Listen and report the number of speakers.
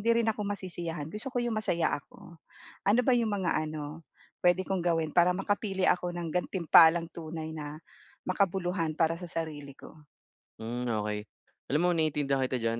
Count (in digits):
2